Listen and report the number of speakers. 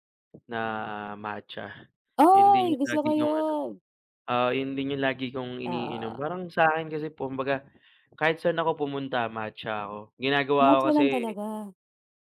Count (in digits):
2